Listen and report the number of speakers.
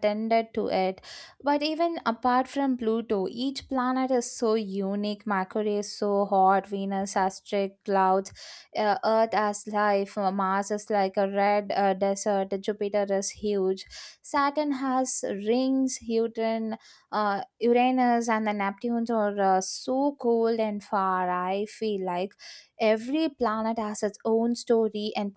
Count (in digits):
1